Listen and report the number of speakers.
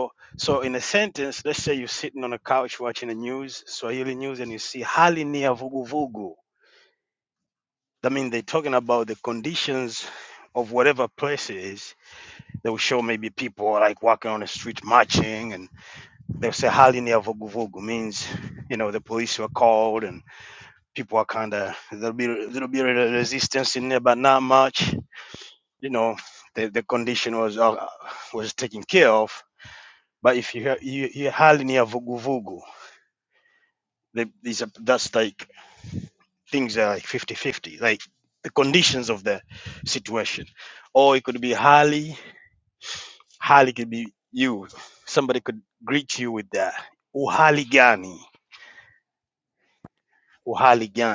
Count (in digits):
1